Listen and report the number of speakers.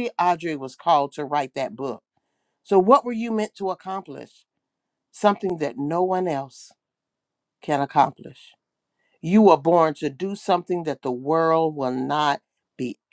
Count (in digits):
1